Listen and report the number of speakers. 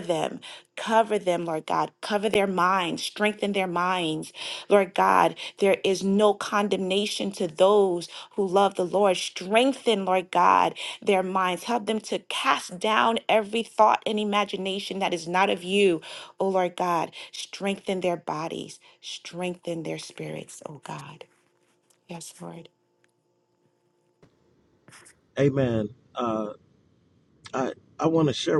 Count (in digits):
2